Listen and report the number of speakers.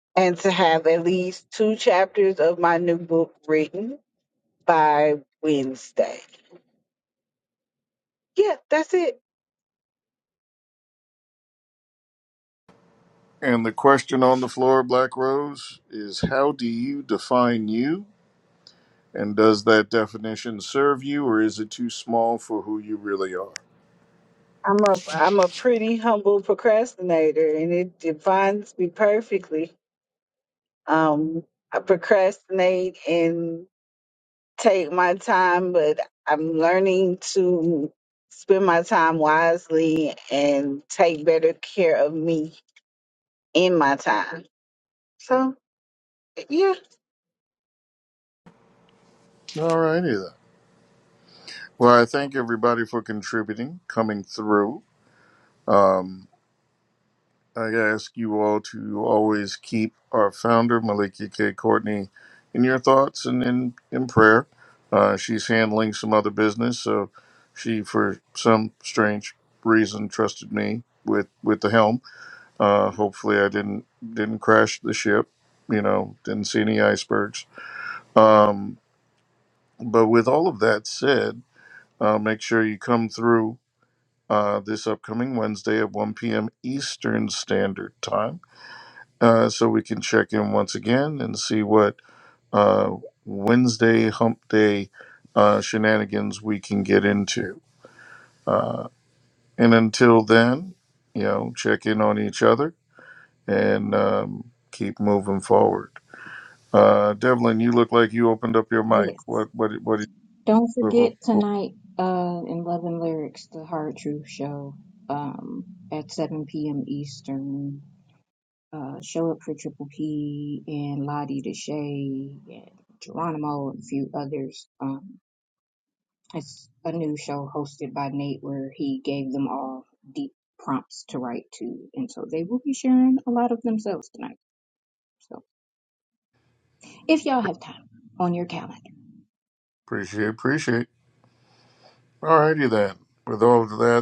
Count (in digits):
3